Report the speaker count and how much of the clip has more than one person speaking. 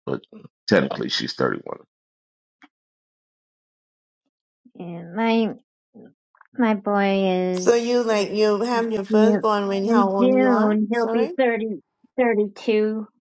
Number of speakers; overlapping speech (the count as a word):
three, about 20%